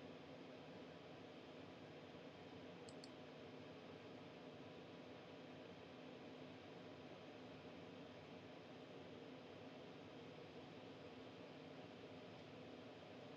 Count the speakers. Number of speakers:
0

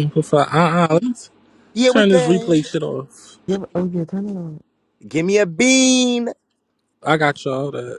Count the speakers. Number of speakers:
3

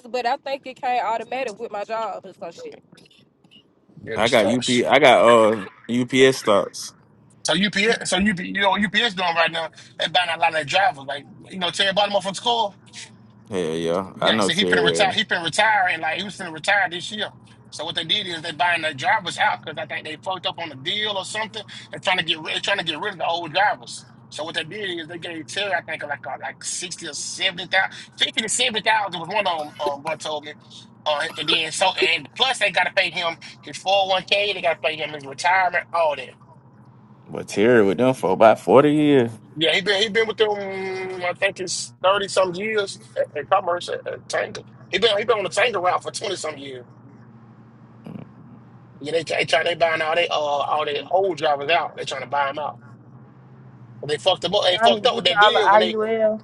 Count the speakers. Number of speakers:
4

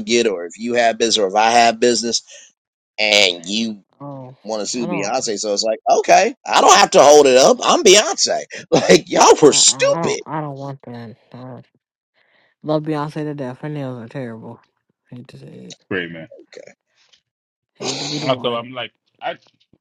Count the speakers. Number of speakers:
3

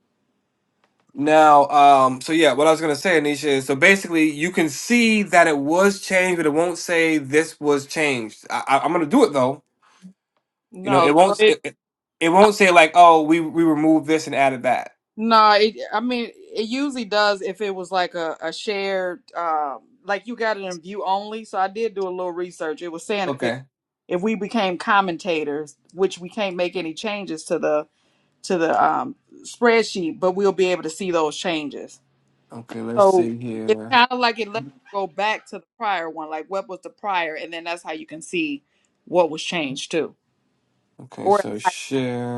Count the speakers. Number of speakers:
2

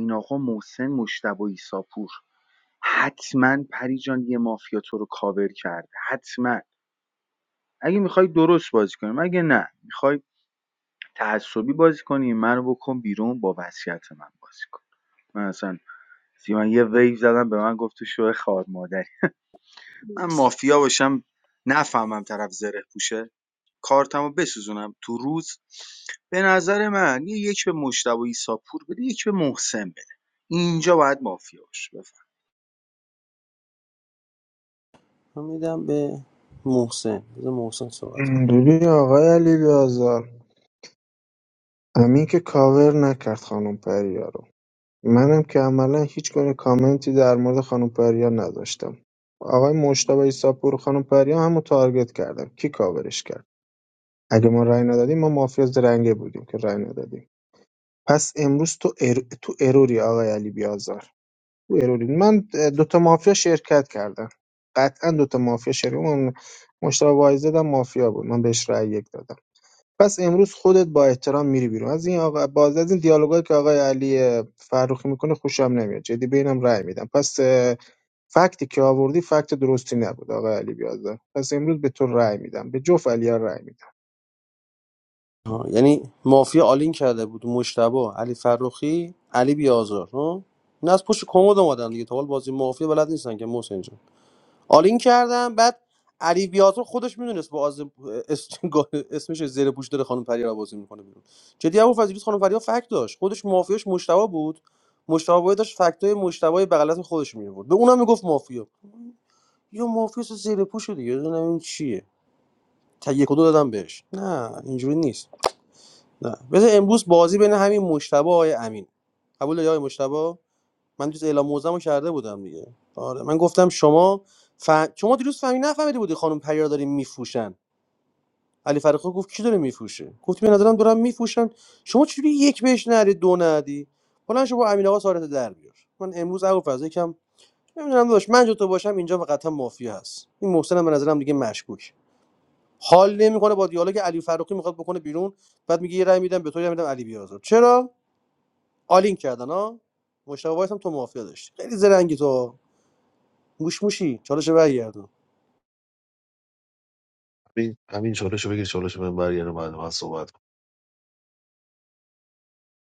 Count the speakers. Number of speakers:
4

